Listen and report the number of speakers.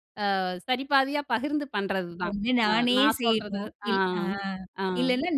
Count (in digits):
2